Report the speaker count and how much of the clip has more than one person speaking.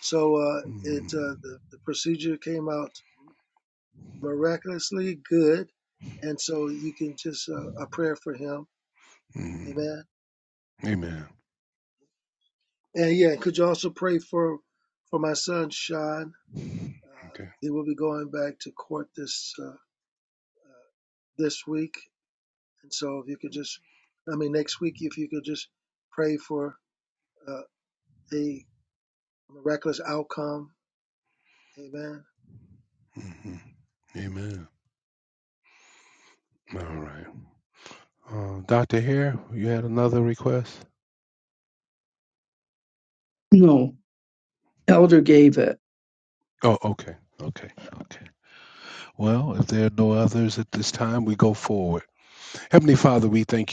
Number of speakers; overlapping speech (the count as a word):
three, about 1%